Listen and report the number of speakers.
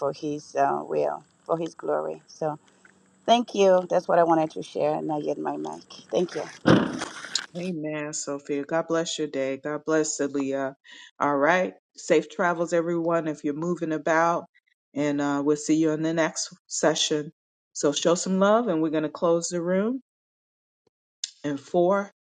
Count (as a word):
two